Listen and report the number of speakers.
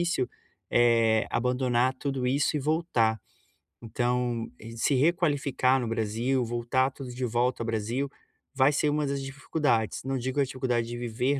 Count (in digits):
1